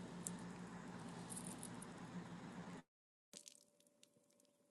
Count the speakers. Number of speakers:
0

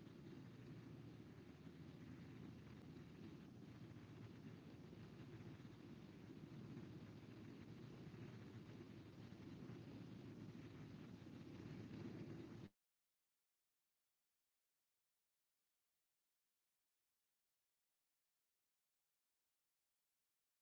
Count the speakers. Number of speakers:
0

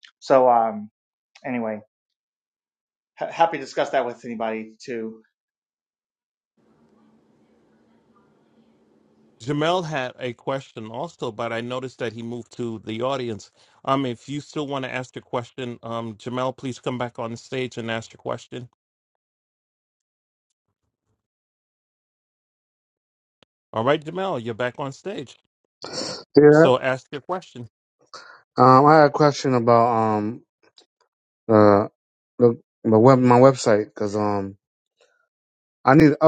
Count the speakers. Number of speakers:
3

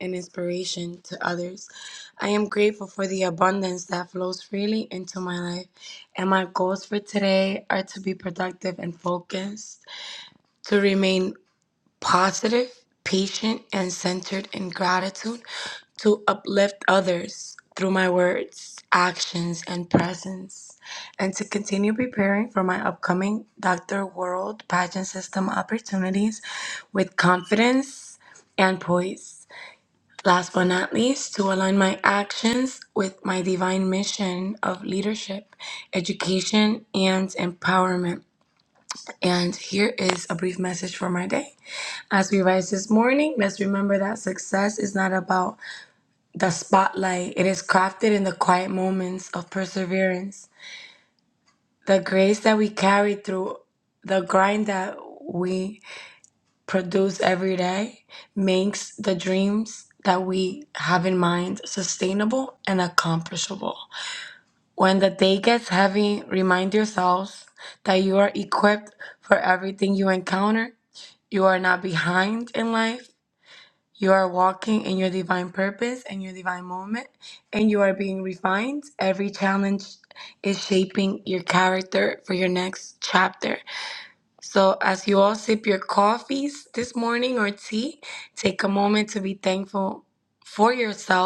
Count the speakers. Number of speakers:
1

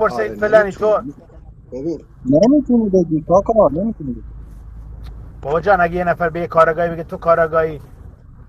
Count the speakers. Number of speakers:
3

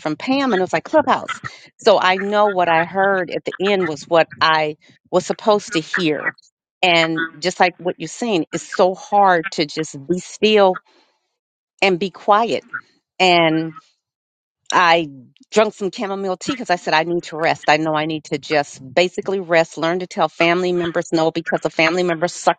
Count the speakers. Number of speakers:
1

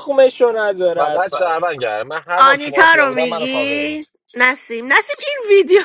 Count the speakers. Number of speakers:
3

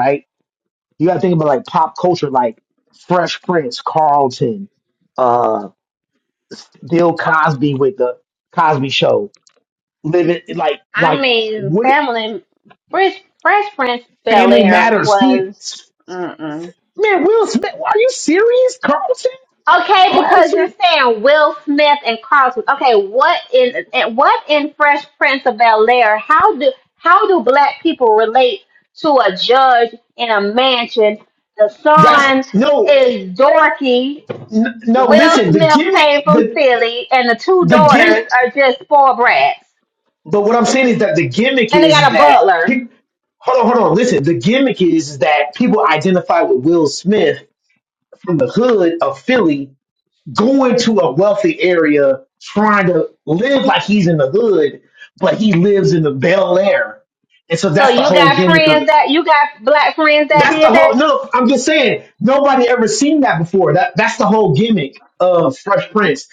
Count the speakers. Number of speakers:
2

